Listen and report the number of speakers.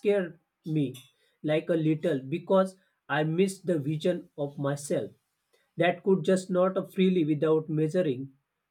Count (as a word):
one